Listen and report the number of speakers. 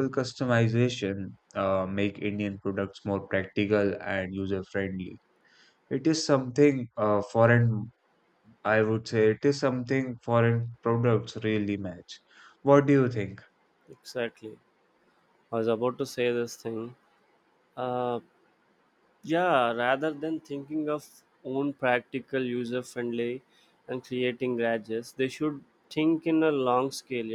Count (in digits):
2